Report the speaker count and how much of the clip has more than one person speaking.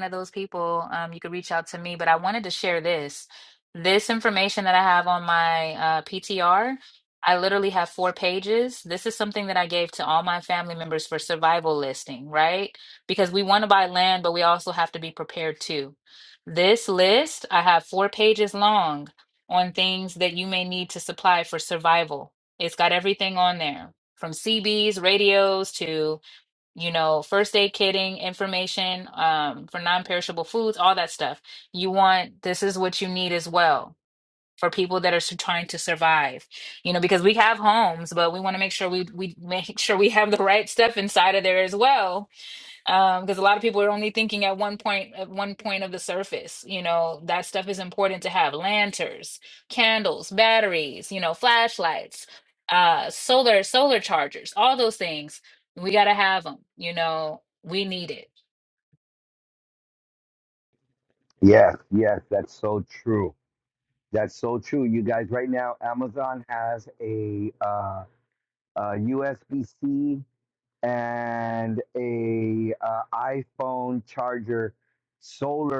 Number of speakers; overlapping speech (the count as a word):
two, no overlap